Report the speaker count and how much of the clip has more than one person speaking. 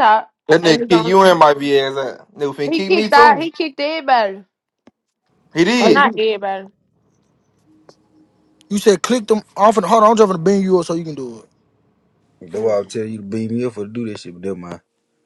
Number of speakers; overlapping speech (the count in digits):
4, about 12%